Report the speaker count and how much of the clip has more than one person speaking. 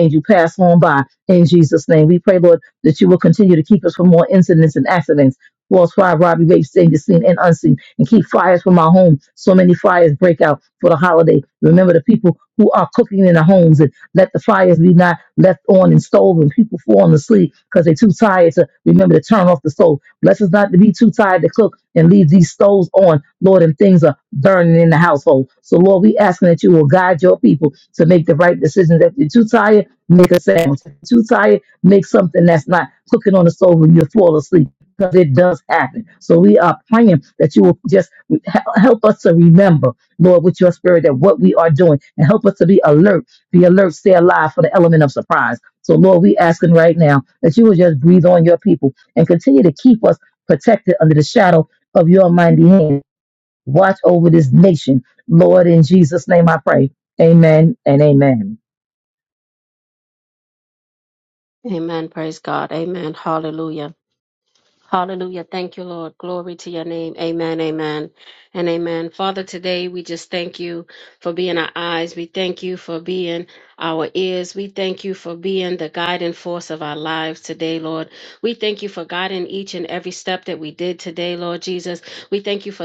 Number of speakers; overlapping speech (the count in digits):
2, no overlap